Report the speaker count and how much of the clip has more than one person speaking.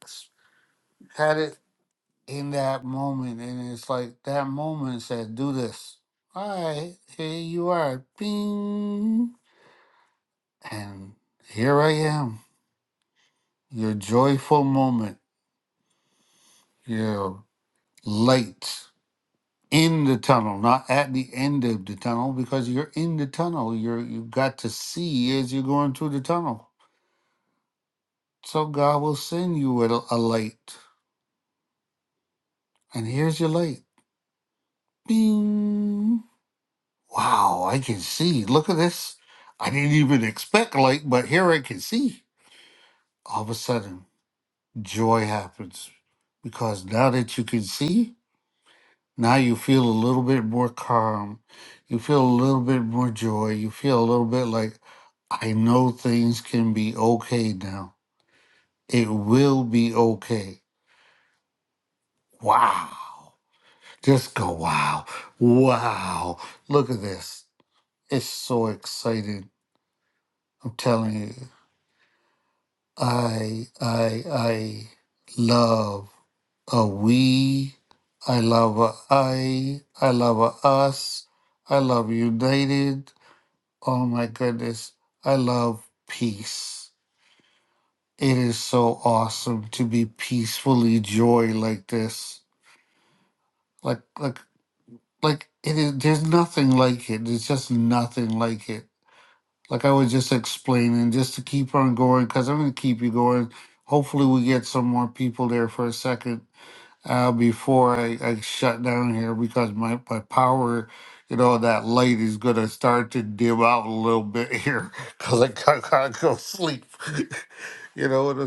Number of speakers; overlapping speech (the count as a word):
one, no overlap